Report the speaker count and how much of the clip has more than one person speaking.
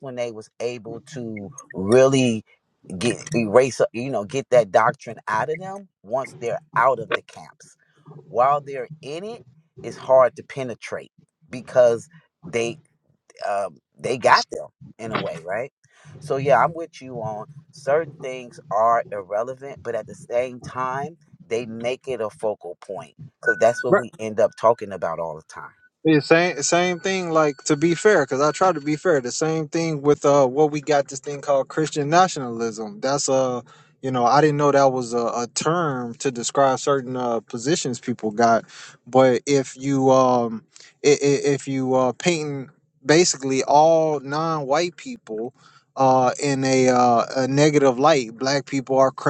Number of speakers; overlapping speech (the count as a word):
two, no overlap